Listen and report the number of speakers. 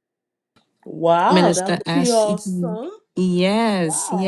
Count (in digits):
2